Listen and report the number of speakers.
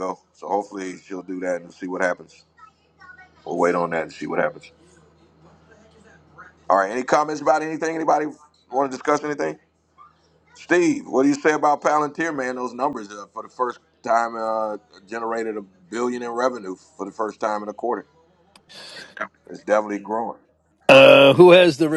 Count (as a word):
two